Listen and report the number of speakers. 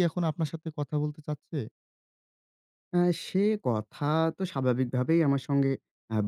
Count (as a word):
two